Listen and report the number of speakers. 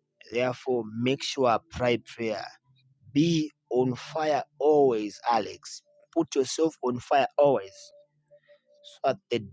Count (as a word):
one